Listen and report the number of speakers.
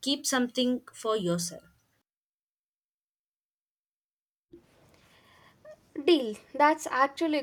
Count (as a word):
two